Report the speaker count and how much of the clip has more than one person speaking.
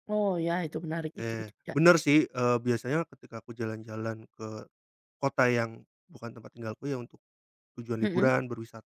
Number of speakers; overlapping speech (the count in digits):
2, about 9%